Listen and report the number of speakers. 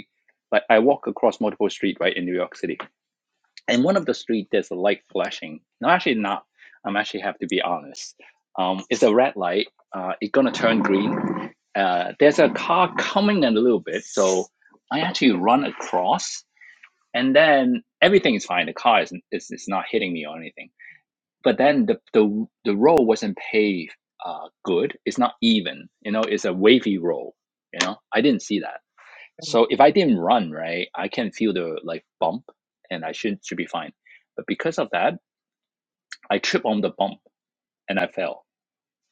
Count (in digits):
1